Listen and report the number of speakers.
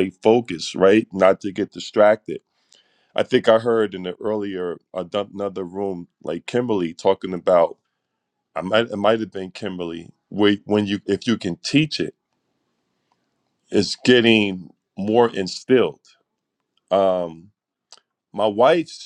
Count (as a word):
one